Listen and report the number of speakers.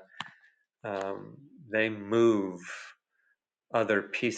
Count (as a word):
one